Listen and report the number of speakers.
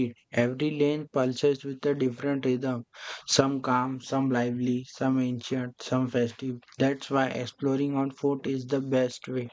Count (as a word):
one